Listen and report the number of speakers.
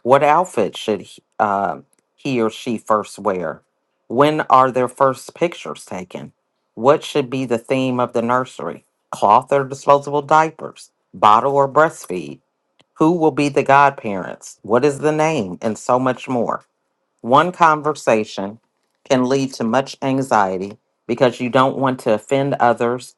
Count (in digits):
1